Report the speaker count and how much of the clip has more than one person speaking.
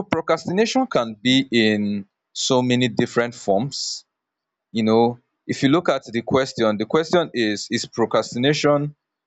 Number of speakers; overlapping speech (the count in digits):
1, no overlap